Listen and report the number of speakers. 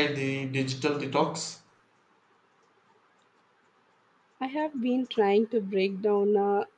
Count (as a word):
two